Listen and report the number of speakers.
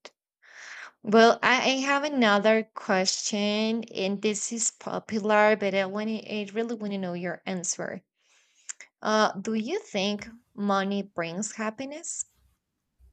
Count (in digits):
1